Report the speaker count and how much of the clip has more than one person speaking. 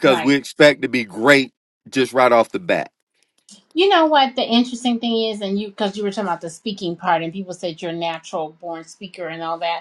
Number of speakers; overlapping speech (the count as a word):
two, about 3%